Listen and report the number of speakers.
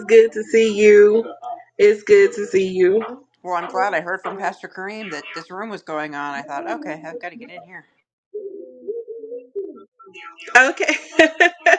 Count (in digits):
2